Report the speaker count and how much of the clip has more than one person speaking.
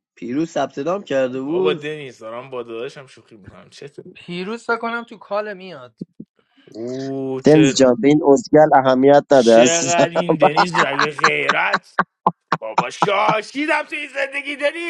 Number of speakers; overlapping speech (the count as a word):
four, about 10%